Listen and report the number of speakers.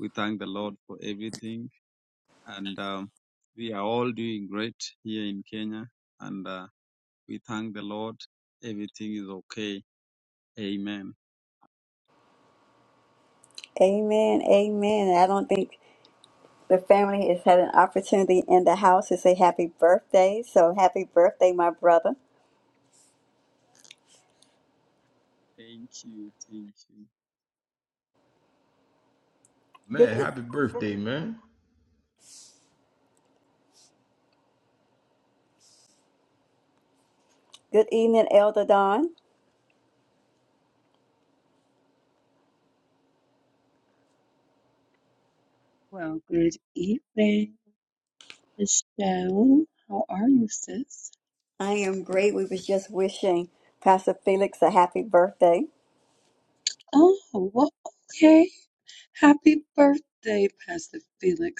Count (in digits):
4